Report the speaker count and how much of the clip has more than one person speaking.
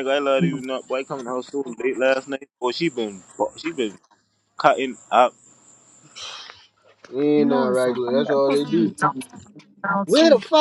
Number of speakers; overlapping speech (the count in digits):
3, about 19%